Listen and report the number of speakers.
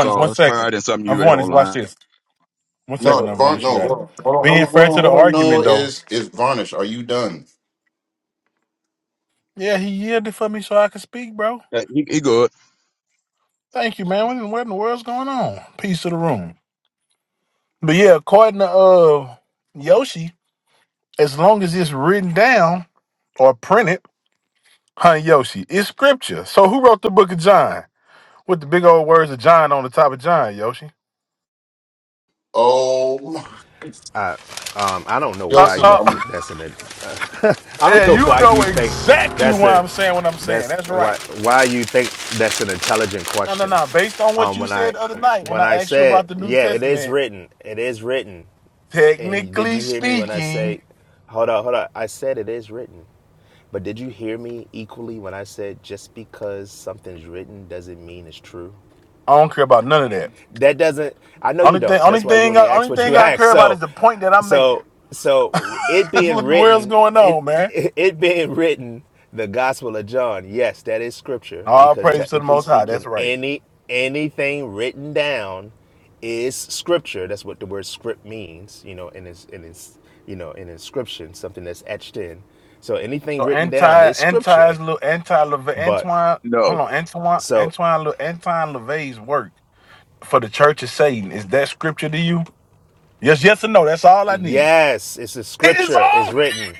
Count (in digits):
4